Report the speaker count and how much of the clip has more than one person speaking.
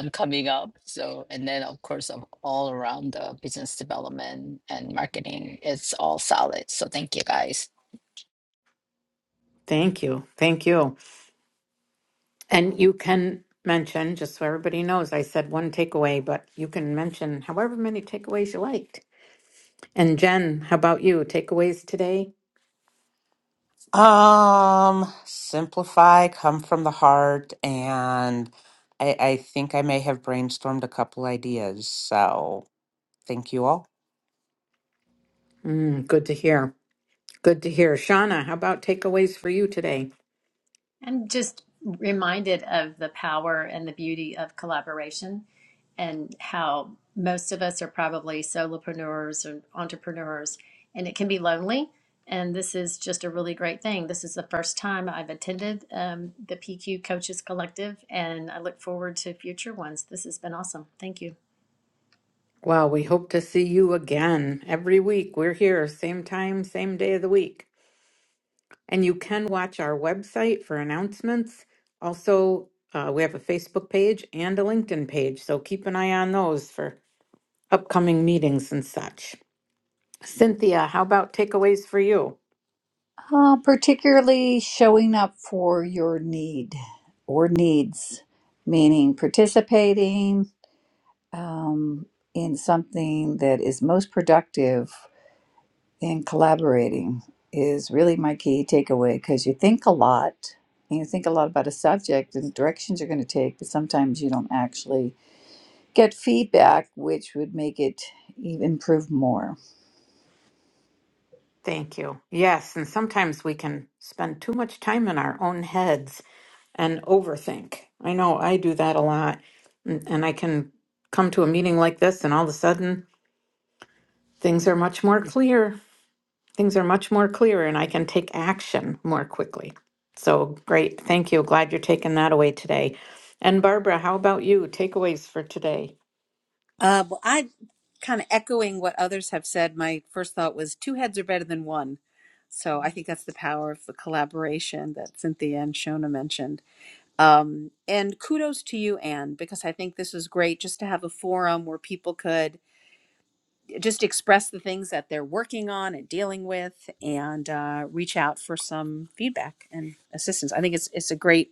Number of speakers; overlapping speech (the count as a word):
six, no overlap